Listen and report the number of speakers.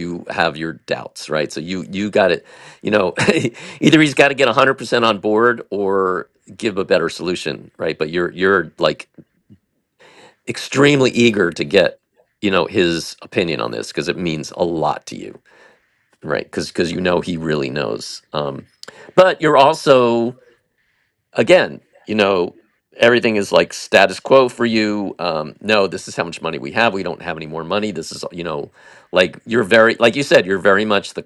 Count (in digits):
1